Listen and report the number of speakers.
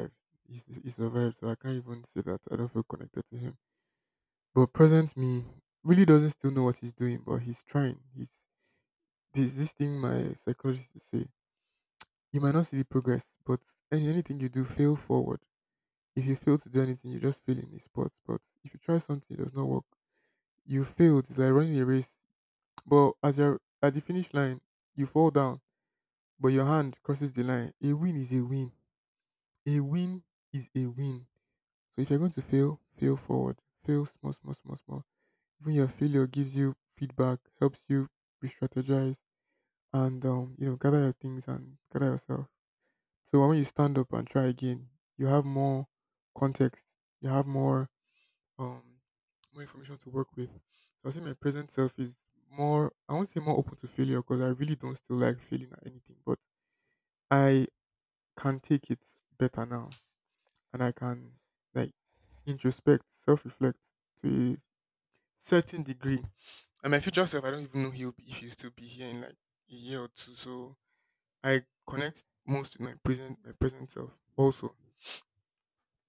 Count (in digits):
1